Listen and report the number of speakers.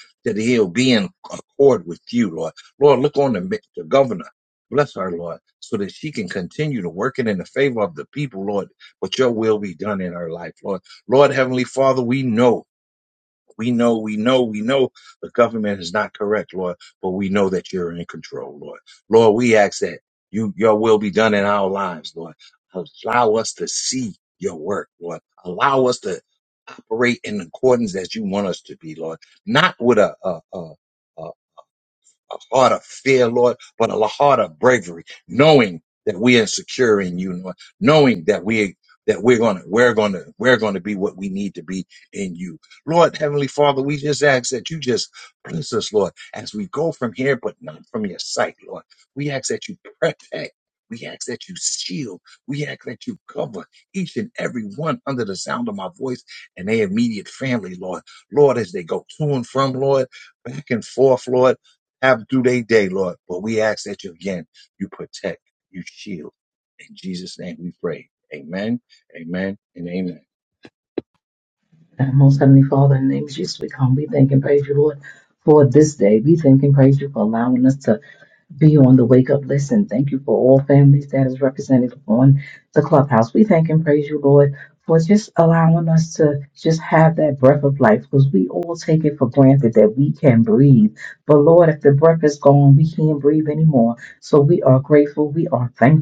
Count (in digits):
2